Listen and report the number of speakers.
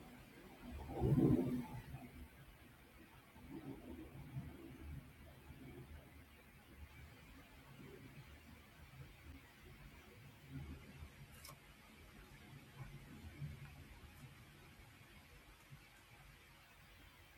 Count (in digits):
0